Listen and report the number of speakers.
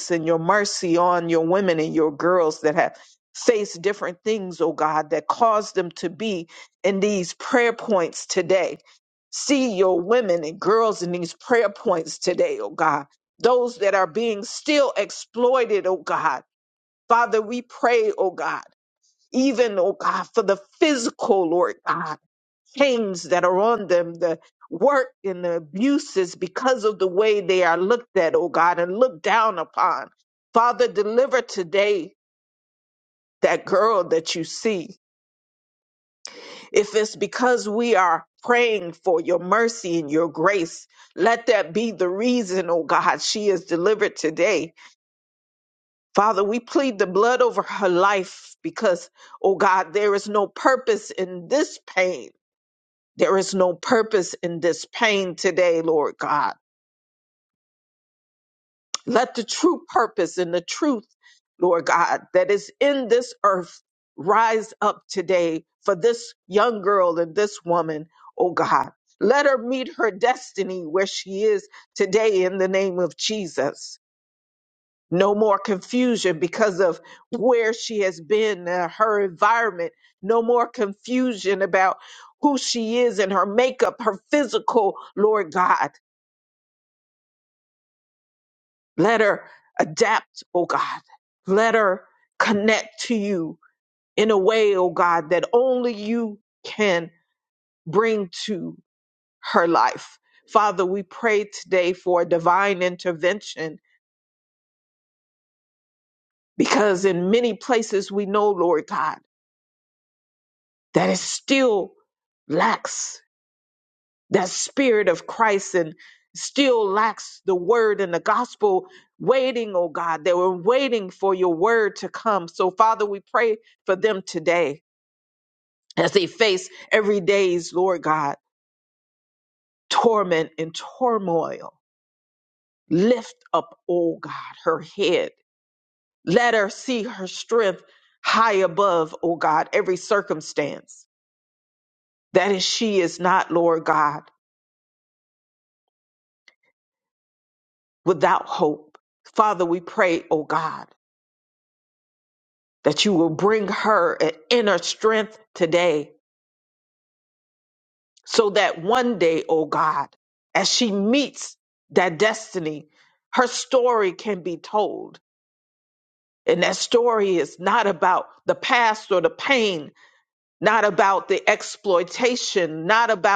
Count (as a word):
one